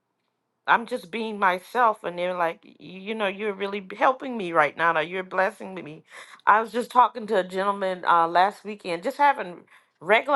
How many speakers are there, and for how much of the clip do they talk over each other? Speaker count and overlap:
1, no overlap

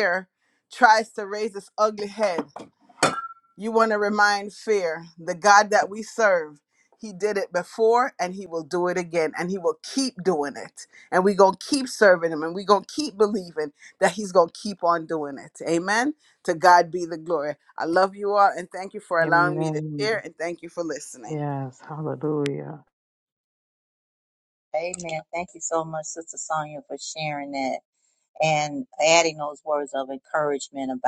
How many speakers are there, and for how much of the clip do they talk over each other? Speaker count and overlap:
3, about 3%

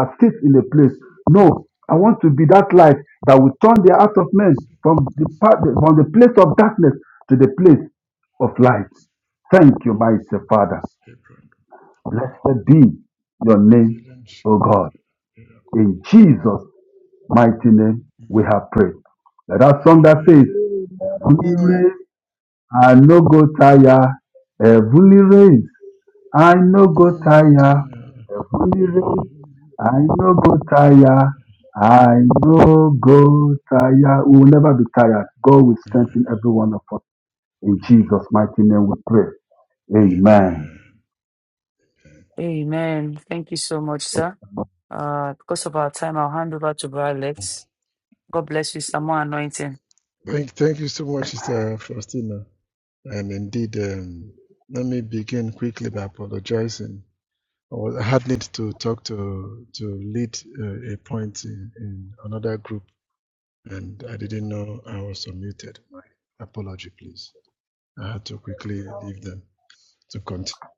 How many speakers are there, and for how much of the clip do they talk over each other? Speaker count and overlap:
4, about 3%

